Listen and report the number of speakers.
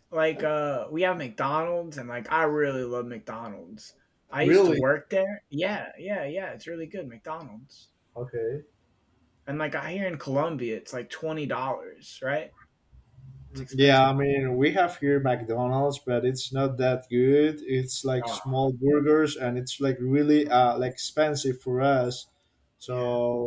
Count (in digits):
2